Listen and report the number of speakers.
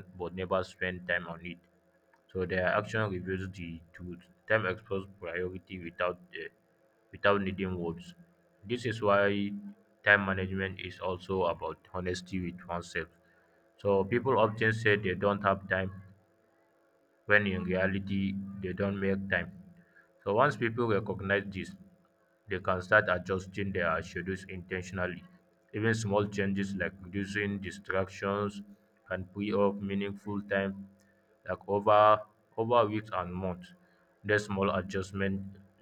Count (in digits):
1